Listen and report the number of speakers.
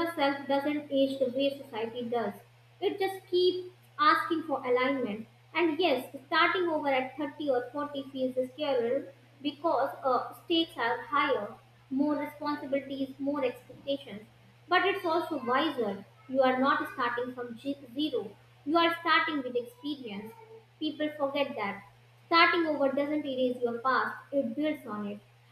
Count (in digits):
1